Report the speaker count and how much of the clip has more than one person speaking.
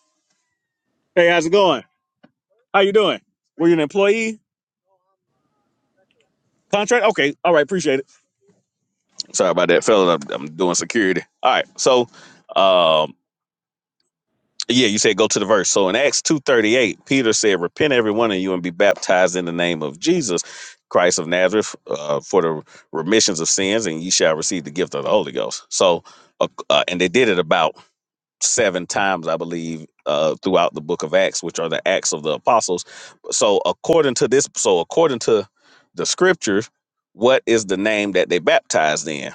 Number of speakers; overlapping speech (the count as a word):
one, no overlap